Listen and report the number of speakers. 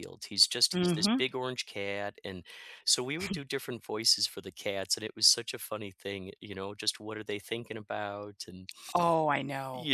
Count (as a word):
two